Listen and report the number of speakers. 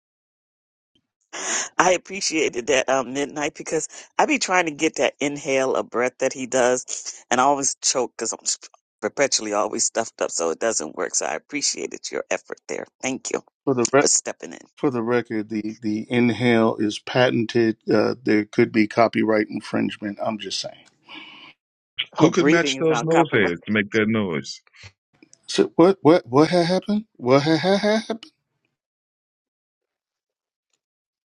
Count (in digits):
3